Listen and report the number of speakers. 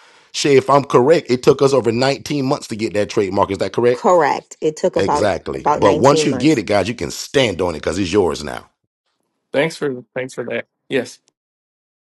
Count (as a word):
three